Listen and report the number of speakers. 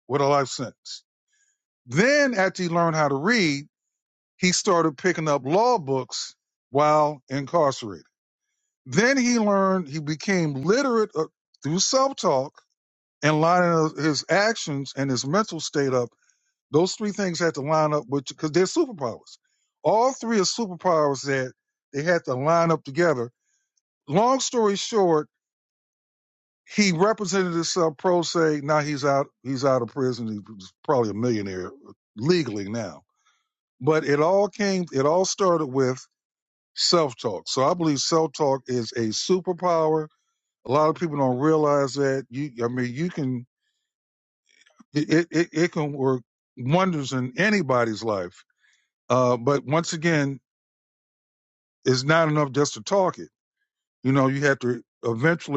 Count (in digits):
1